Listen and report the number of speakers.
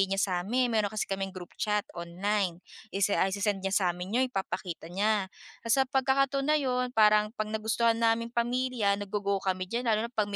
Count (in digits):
1